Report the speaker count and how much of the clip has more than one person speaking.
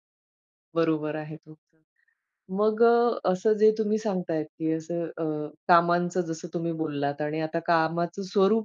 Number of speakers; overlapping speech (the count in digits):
1, no overlap